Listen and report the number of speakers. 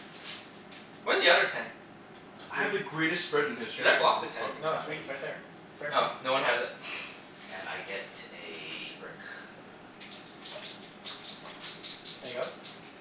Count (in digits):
4